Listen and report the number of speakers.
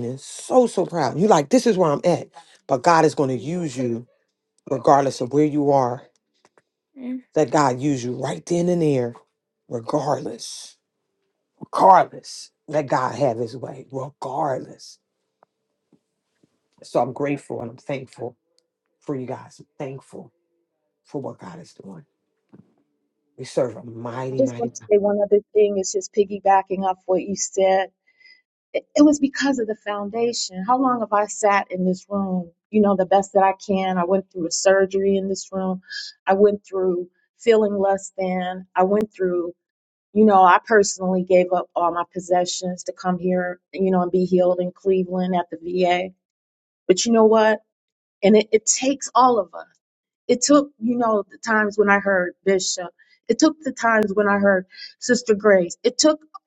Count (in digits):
2